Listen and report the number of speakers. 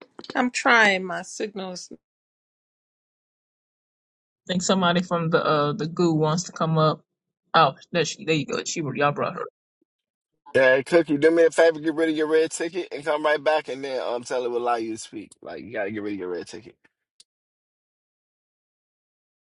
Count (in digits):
3